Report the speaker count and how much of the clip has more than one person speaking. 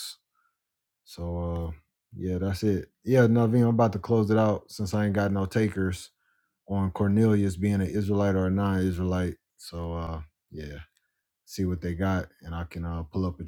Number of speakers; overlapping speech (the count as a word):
one, no overlap